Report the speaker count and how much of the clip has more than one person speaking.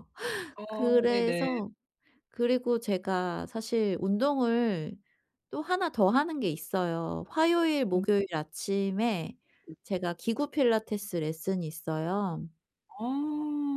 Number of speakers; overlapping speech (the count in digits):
2, about 8%